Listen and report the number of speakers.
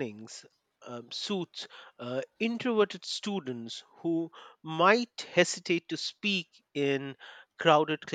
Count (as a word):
one